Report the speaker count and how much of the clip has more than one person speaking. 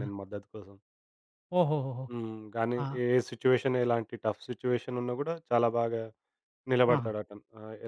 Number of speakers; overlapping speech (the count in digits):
2, about 6%